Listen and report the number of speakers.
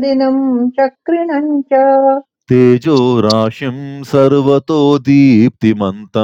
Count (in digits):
2